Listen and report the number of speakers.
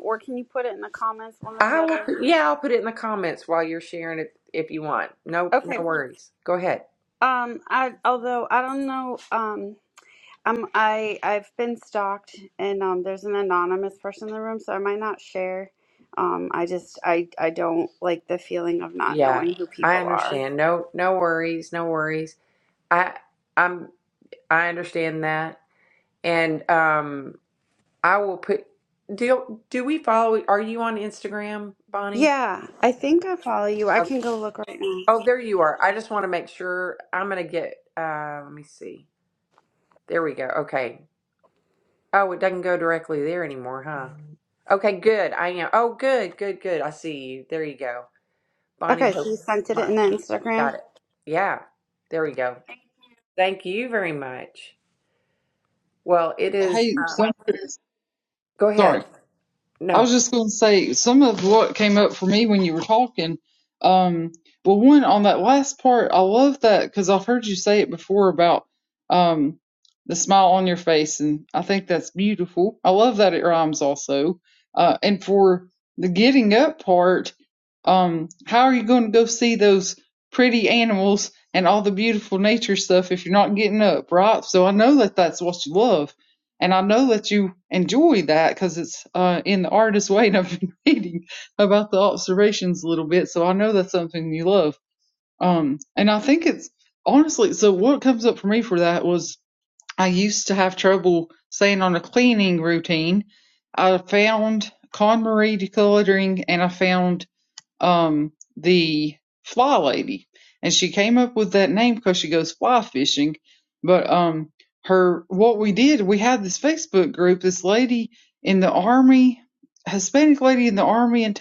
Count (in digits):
3